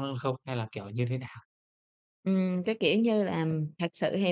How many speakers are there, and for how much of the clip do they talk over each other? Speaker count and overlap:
2, no overlap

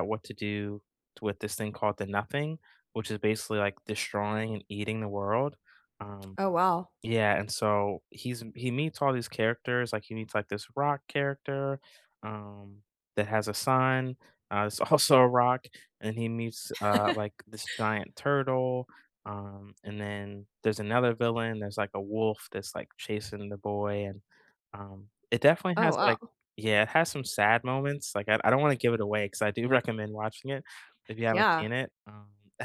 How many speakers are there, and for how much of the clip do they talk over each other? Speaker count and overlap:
2, about 2%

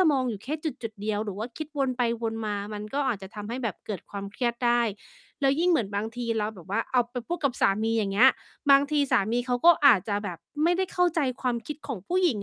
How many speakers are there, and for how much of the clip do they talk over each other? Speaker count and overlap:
1, no overlap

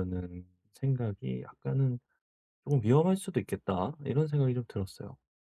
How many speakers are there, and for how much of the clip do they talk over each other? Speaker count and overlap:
1, no overlap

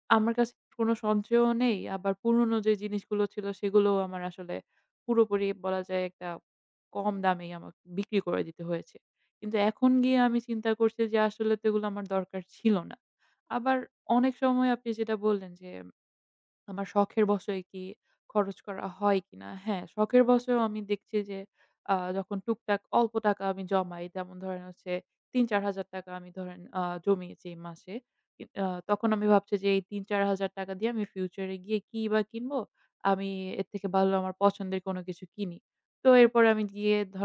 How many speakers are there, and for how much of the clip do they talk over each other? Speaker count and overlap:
1, no overlap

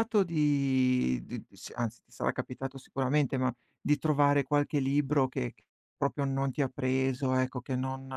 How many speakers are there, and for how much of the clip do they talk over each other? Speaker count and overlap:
1, no overlap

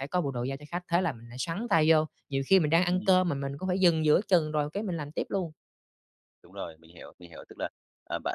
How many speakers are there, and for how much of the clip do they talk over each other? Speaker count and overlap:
2, about 2%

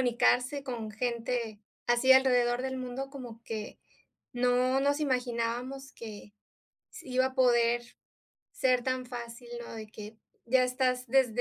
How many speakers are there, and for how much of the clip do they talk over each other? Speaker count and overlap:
1, no overlap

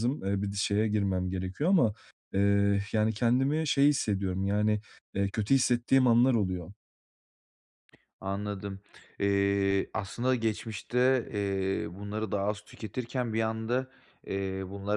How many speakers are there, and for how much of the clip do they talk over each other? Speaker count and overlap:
2, no overlap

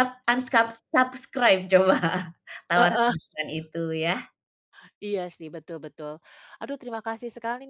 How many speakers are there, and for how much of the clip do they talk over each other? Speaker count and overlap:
2, about 3%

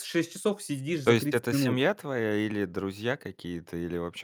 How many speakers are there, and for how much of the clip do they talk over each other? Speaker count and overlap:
2, about 17%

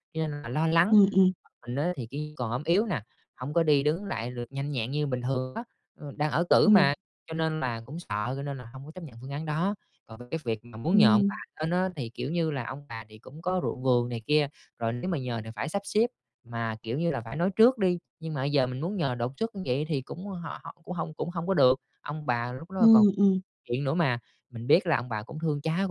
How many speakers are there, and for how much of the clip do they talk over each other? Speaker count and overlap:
2, about 4%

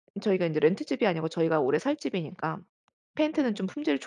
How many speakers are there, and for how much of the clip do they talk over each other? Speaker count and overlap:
1, no overlap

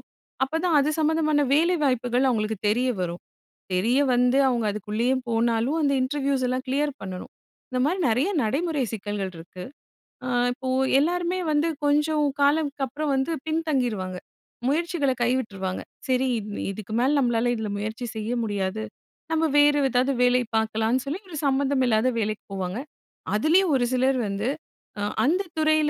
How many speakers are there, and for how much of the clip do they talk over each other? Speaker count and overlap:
1, no overlap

